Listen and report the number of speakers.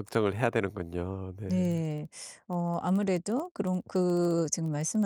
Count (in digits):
2